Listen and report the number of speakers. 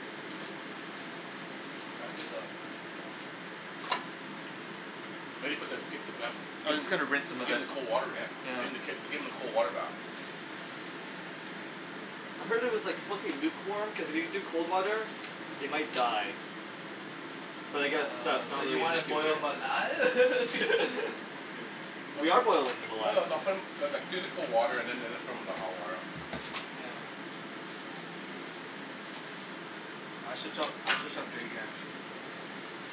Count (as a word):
three